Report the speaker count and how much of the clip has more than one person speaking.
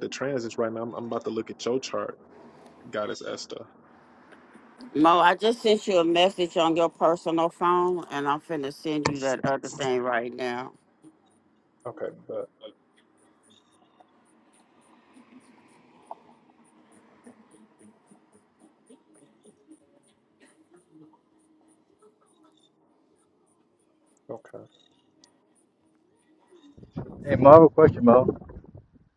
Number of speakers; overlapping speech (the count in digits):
3, no overlap